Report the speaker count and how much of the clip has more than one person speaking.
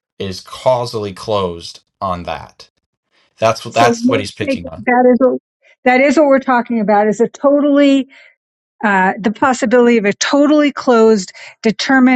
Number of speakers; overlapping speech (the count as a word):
two, about 8%